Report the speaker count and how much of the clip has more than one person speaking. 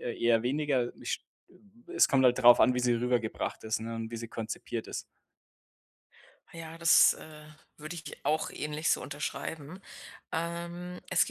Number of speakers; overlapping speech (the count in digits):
2, no overlap